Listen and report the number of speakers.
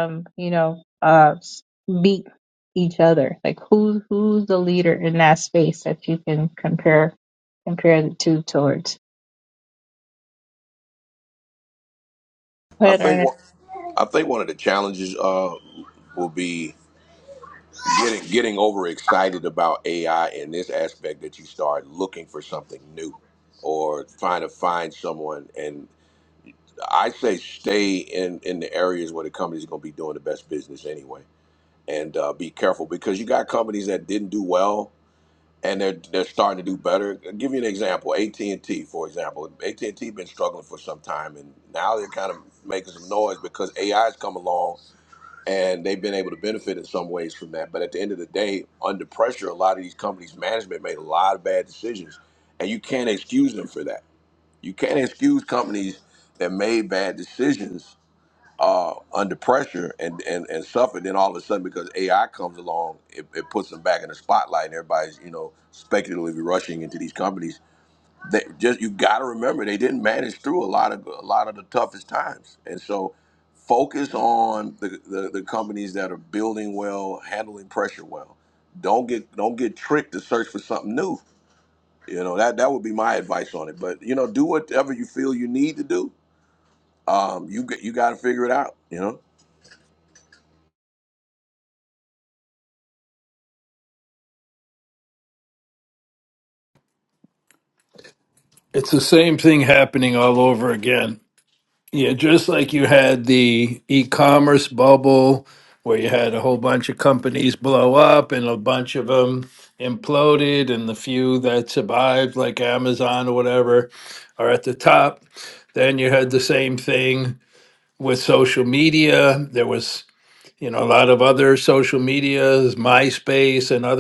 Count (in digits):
3